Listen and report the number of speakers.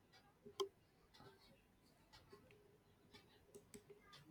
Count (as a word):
zero